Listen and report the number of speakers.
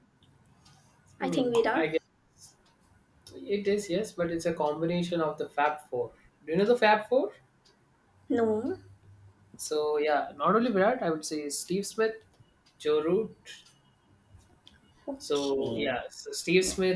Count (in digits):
2